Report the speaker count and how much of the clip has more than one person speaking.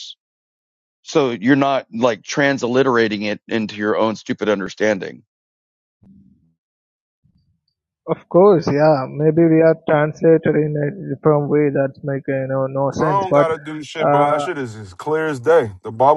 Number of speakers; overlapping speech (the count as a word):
three, about 6%